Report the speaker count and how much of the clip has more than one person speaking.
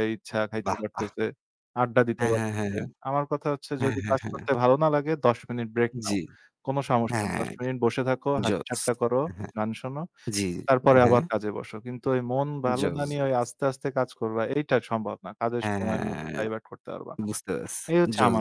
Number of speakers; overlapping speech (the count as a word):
two, about 27%